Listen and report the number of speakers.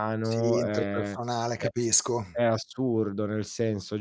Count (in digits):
2